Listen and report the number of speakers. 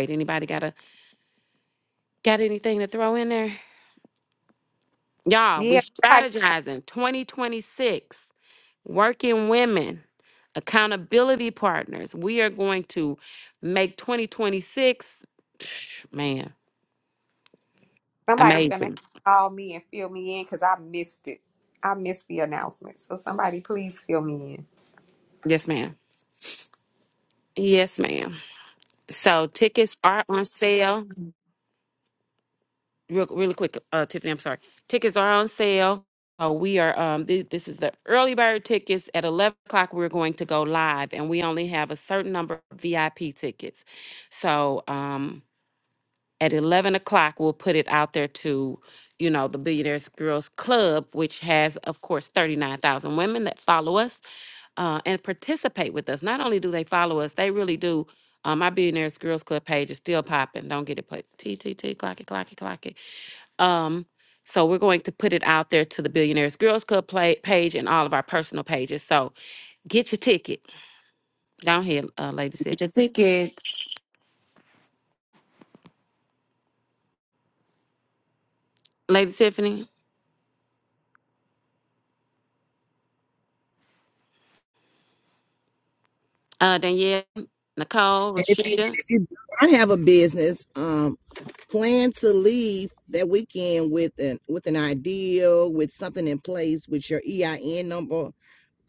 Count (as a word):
four